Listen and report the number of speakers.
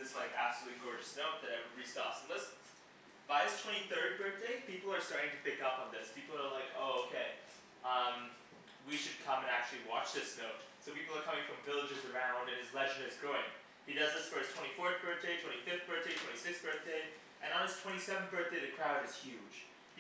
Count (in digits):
1